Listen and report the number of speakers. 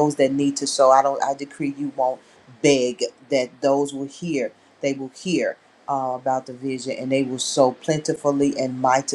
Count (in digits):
1